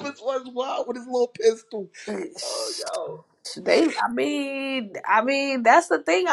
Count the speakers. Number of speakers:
two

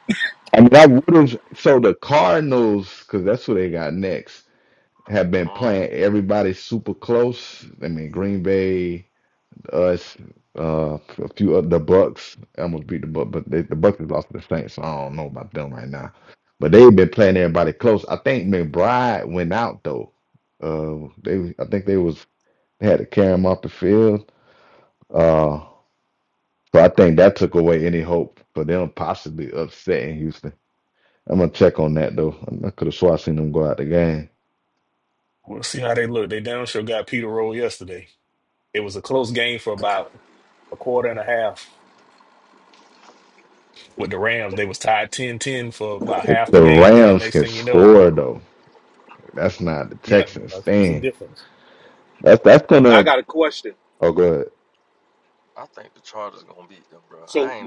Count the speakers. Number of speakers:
four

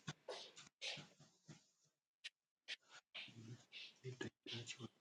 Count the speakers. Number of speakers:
zero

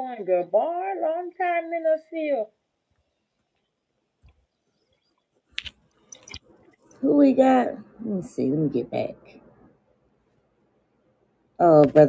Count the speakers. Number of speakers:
two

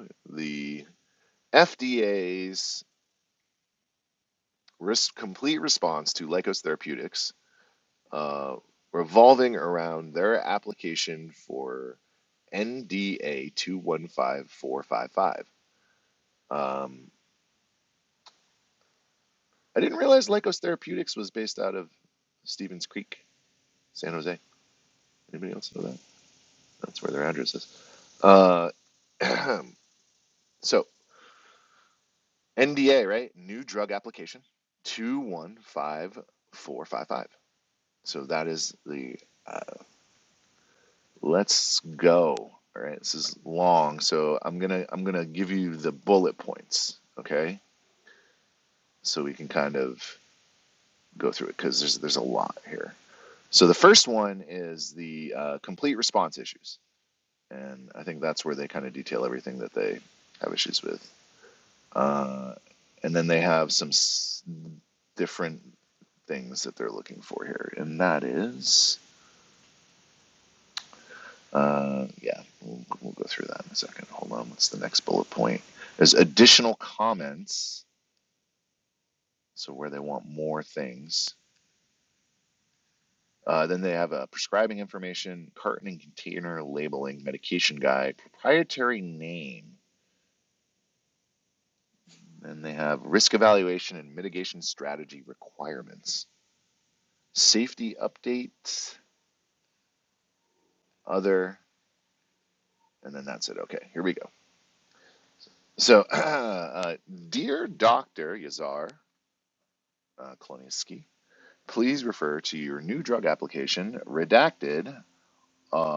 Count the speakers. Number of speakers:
one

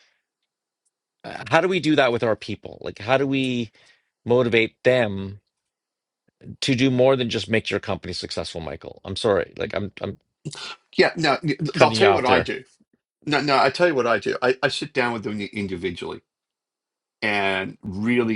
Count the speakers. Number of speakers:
two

